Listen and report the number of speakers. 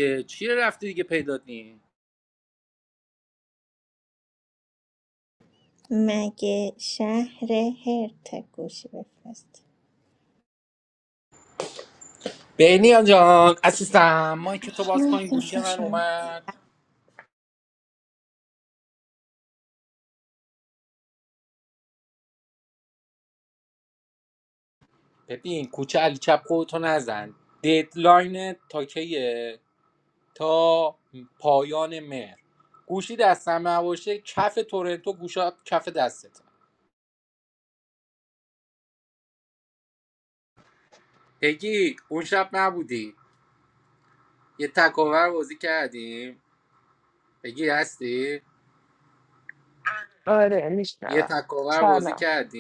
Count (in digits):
3